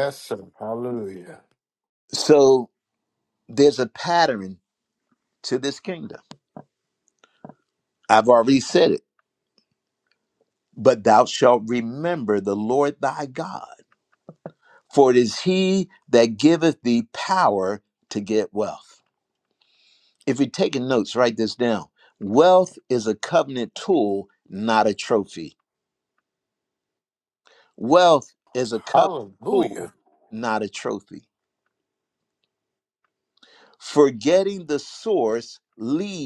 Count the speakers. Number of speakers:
2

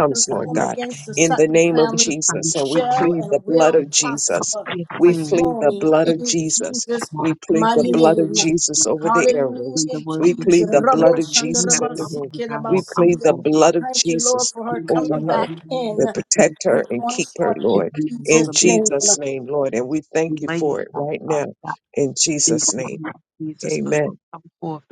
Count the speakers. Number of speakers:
3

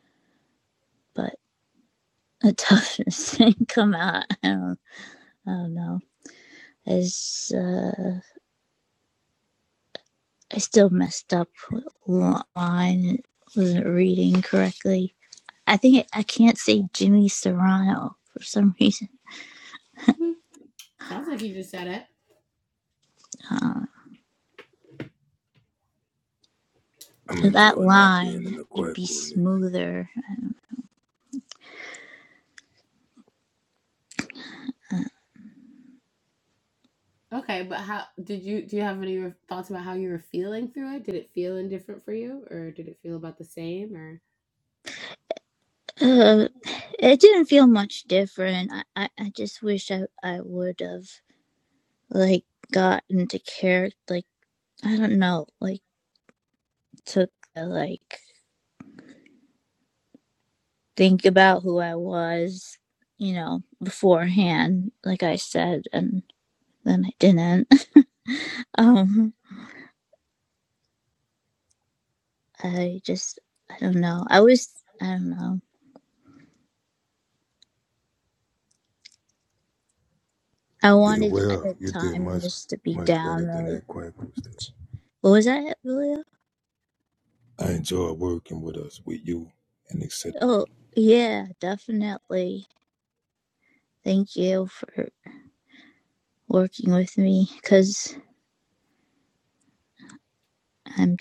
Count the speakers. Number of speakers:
3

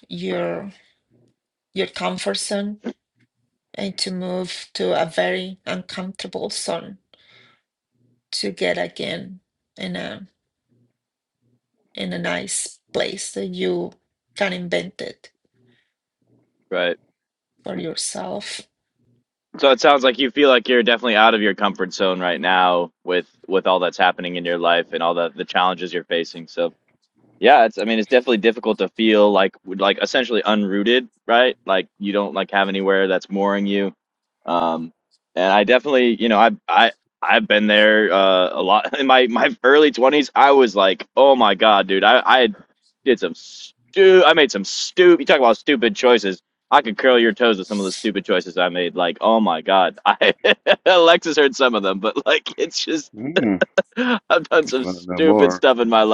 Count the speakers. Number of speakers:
3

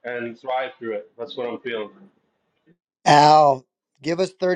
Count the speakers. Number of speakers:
2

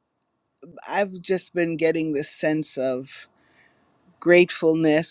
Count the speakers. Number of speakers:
1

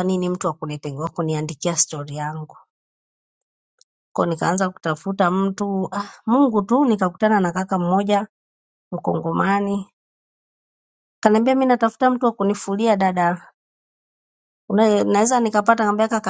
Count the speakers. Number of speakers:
1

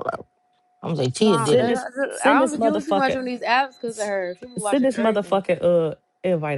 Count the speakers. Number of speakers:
3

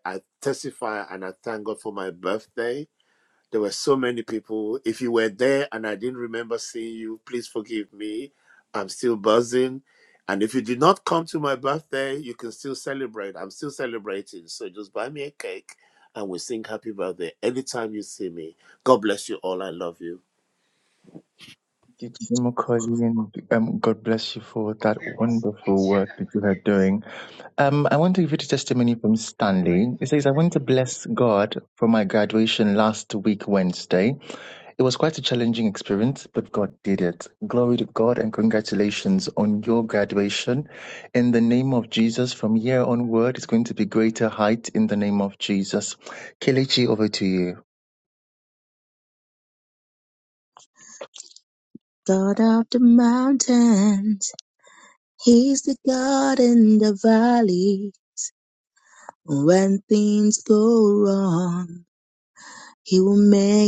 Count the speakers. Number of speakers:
3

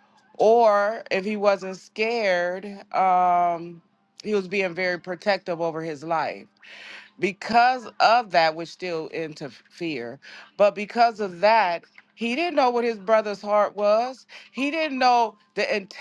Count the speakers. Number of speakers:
1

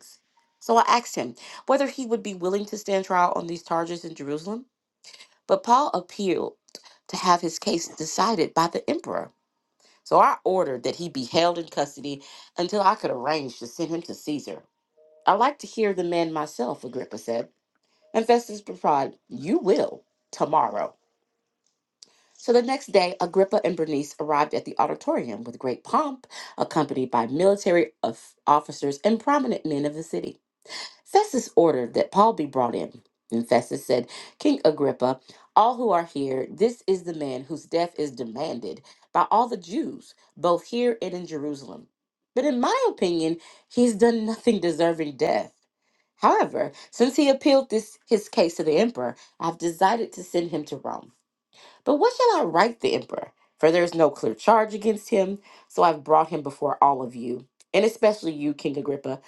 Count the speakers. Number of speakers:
1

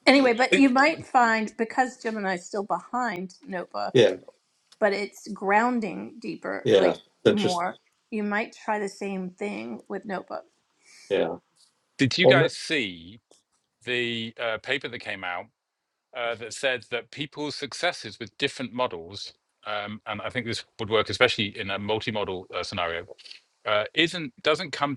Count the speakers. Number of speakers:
3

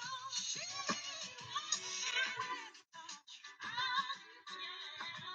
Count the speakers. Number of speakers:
0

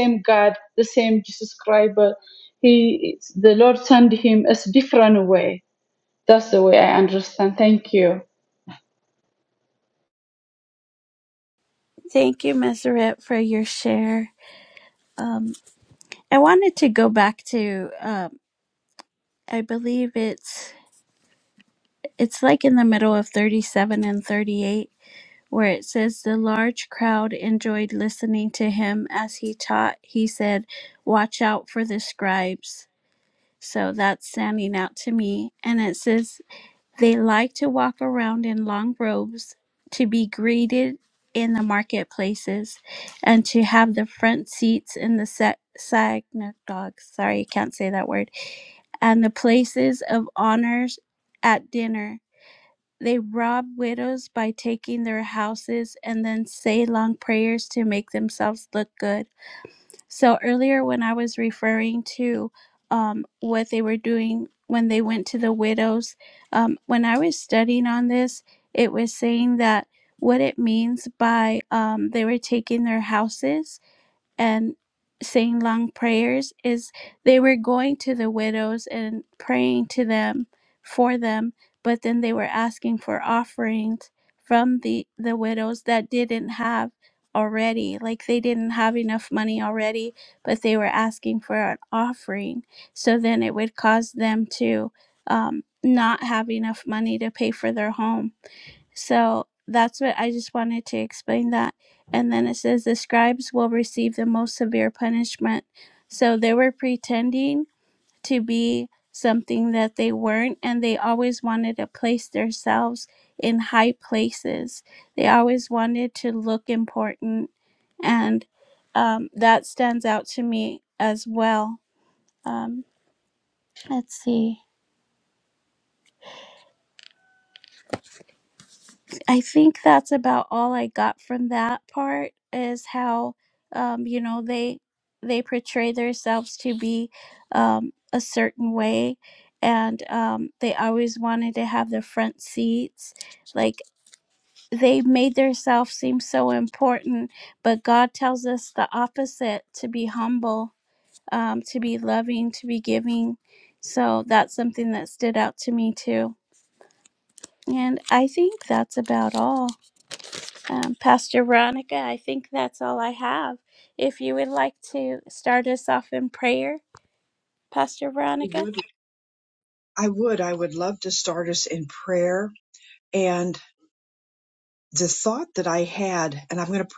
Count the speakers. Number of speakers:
3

